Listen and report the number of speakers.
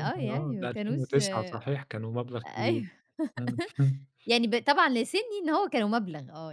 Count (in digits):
2